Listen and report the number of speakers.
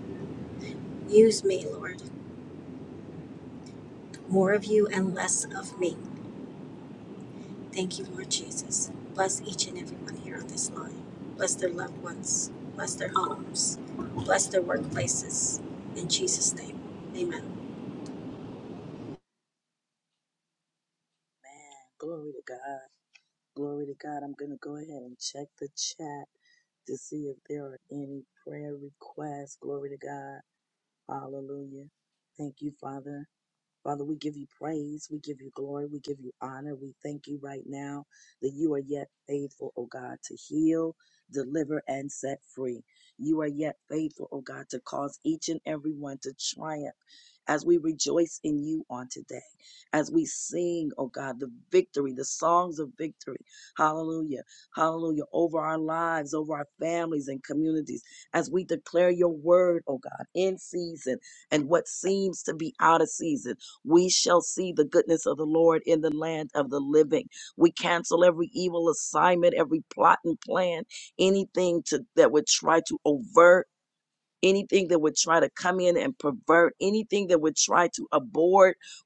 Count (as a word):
two